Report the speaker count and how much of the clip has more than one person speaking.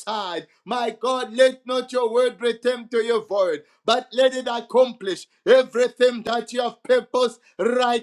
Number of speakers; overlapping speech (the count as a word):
one, no overlap